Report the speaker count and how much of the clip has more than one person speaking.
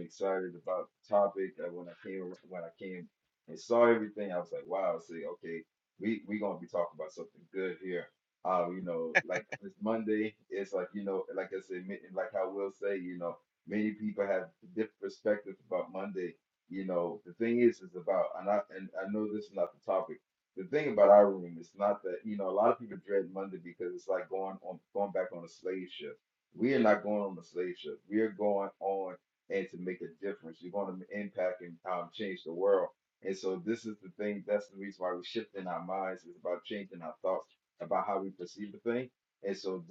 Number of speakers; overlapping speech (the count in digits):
1, no overlap